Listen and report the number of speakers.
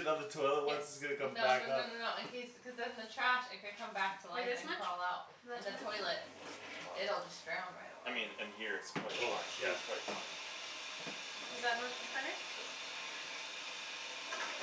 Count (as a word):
four